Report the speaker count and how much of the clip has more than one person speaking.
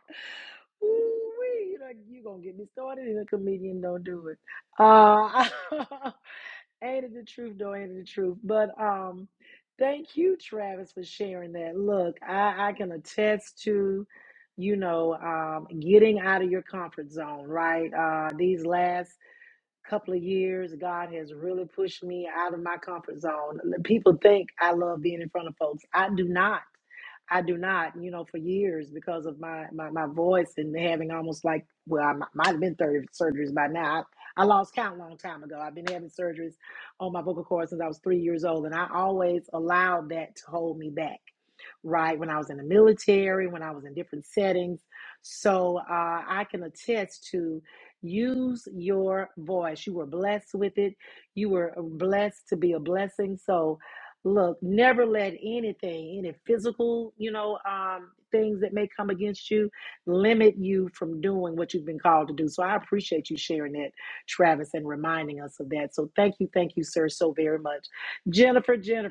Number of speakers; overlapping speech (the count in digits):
1, no overlap